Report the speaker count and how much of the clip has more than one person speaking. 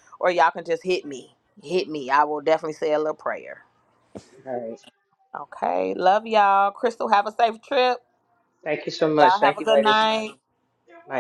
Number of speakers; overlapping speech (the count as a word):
two, about 7%